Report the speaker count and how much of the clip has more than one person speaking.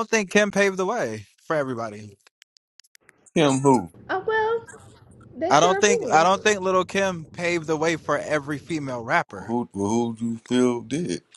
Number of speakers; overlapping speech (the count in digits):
3, about 8%